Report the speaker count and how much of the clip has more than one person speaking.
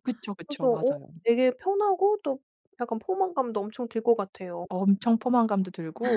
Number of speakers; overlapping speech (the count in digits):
2, about 9%